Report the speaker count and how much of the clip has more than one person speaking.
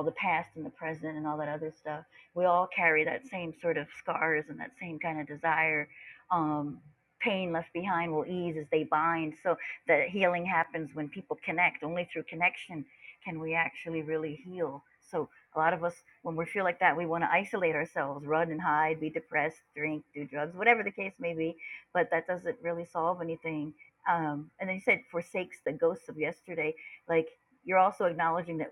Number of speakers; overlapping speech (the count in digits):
1, no overlap